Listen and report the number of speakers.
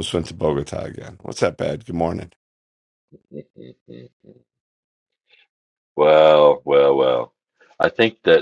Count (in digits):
2